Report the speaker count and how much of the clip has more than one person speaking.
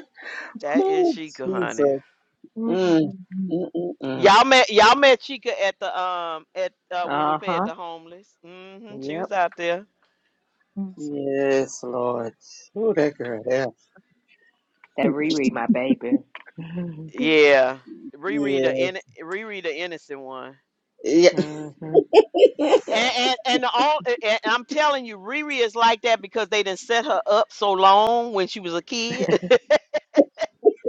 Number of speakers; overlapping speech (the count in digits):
3, about 9%